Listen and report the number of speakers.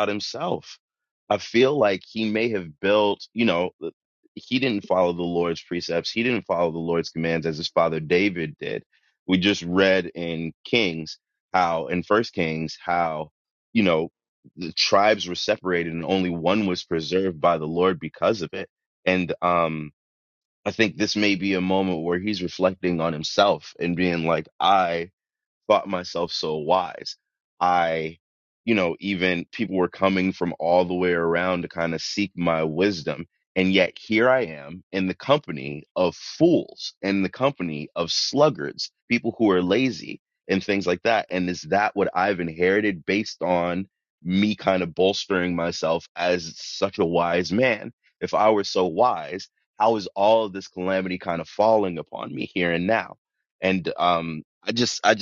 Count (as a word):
one